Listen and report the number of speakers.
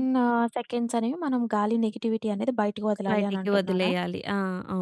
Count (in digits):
2